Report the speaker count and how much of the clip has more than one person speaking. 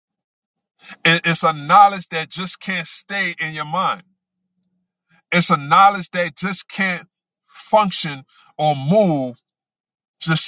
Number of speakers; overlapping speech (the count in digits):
1, no overlap